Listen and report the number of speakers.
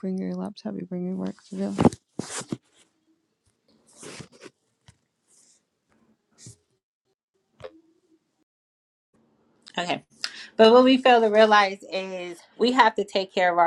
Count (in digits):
2